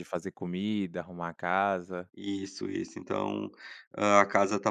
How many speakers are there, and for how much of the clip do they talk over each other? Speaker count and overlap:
two, under 1%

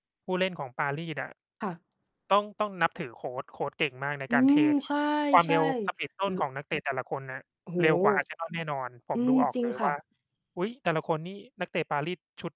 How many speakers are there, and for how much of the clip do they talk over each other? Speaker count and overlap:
two, about 14%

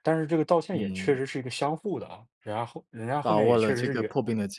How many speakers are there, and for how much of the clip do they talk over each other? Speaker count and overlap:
two, about 28%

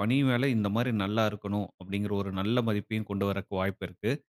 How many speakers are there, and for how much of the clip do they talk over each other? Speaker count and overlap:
one, no overlap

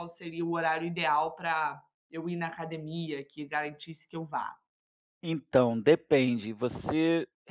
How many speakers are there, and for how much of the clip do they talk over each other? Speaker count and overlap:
two, no overlap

